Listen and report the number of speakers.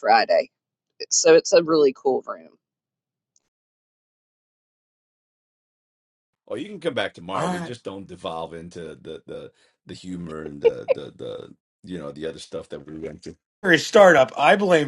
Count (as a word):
three